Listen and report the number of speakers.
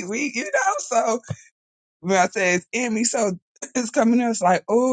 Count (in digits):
1